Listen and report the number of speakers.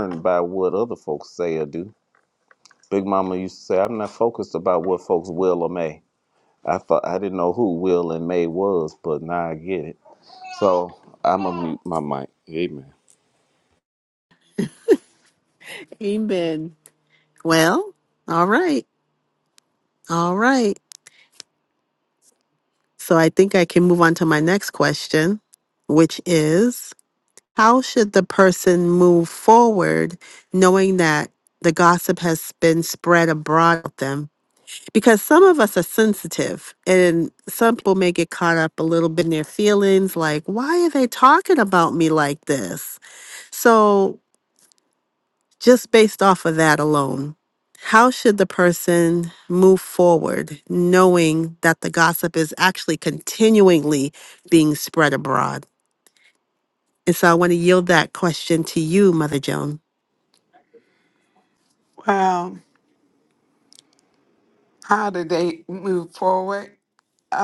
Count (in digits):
3